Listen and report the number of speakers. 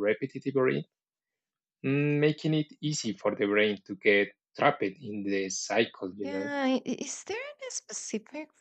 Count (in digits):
2